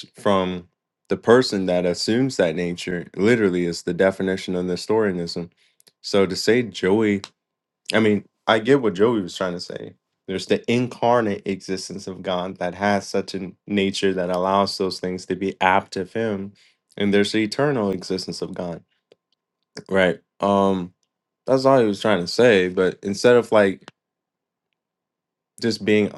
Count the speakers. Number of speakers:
1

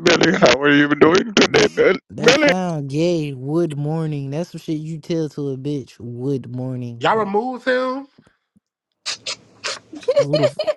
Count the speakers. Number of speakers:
3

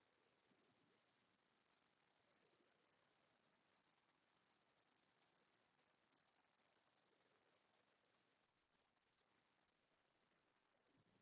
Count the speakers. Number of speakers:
0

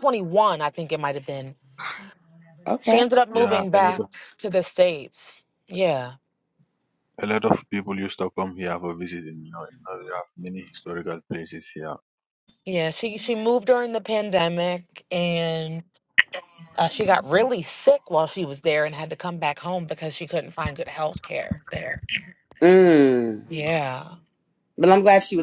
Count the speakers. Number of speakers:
3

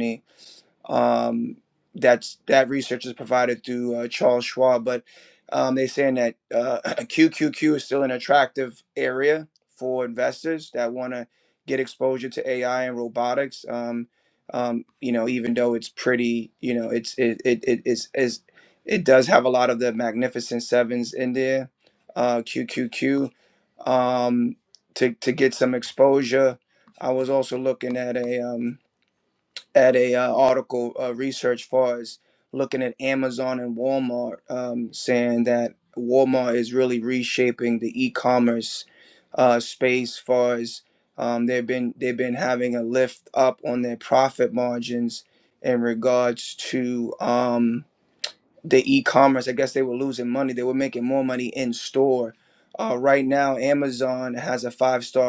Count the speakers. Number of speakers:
1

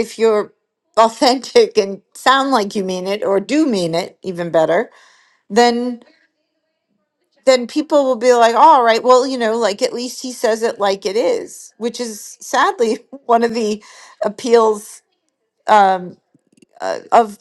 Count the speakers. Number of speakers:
1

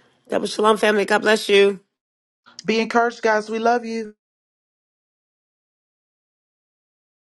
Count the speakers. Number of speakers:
2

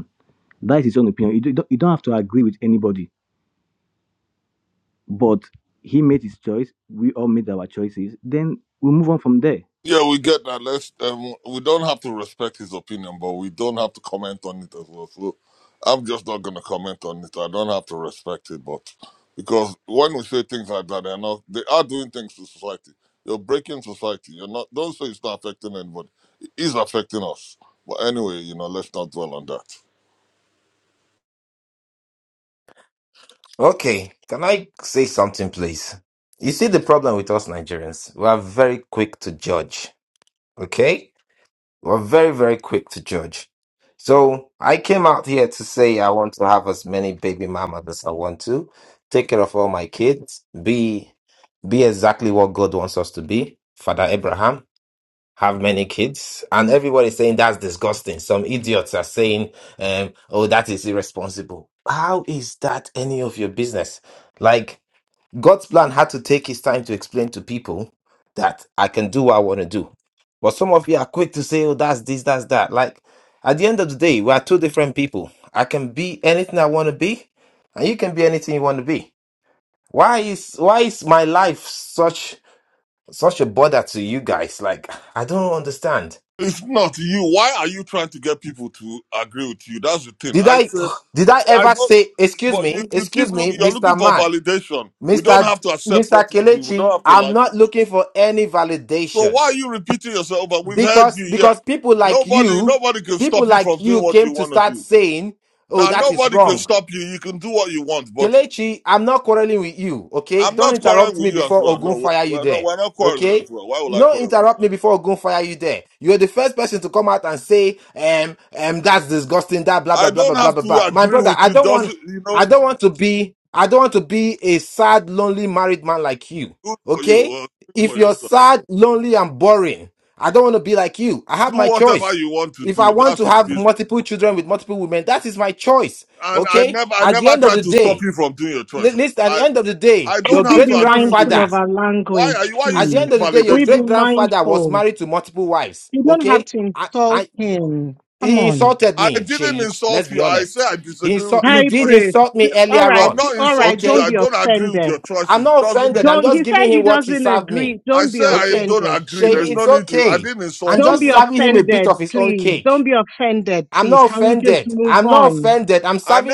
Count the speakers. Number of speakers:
4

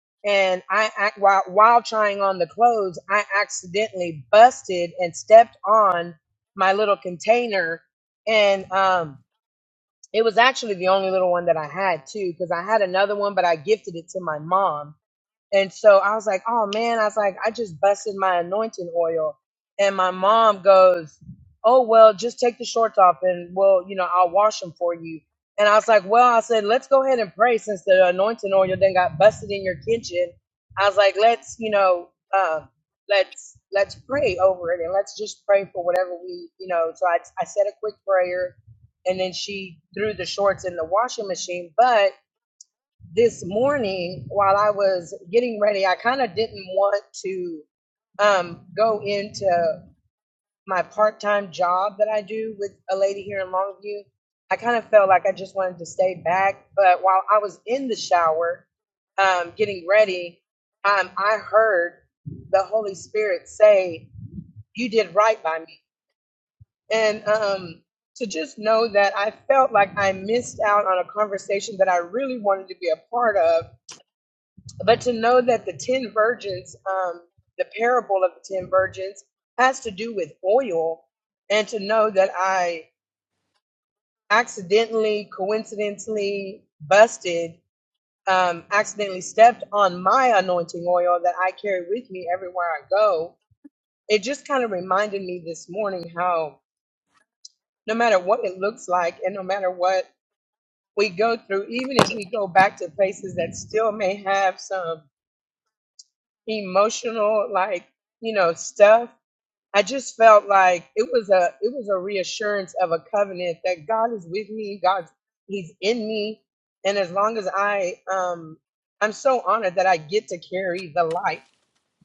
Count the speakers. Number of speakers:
1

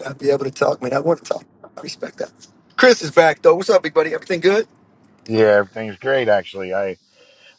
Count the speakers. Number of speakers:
2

